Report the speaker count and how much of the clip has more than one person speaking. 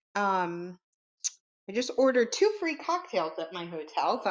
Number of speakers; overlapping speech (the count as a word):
one, no overlap